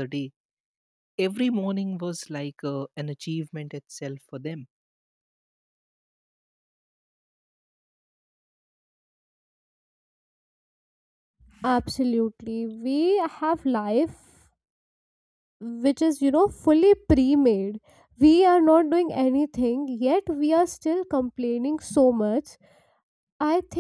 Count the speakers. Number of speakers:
2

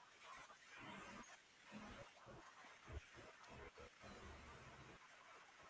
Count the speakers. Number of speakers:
0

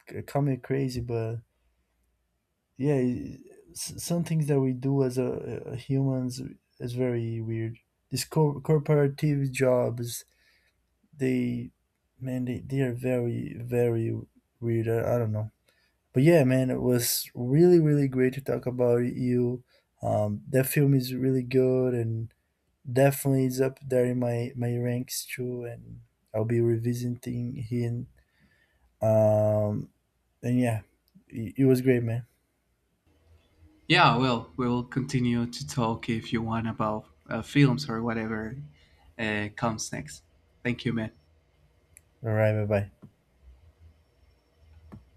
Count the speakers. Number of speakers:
2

